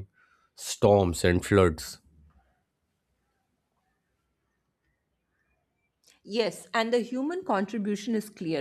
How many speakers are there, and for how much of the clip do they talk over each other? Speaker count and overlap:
2, no overlap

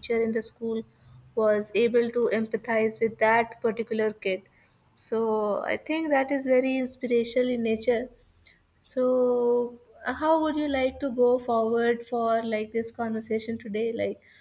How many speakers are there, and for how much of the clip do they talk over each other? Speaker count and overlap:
1, no overlap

